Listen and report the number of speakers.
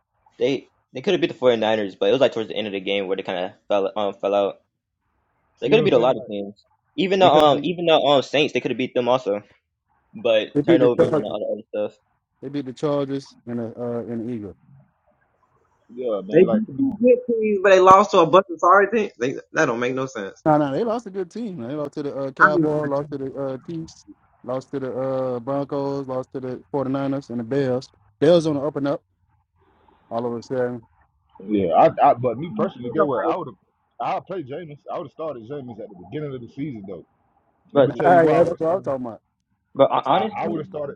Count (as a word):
four